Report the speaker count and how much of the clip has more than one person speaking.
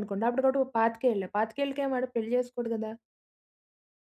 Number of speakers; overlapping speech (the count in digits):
1, no overlap